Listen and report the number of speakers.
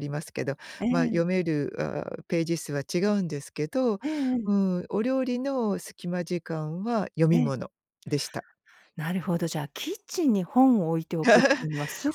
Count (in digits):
2